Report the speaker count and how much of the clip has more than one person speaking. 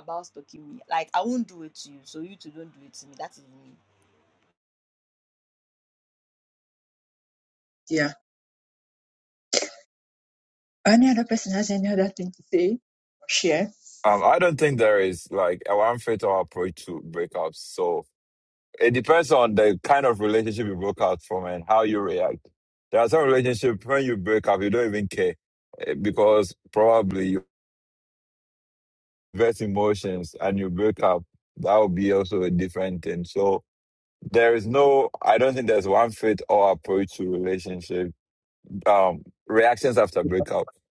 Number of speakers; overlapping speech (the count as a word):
three, no overlap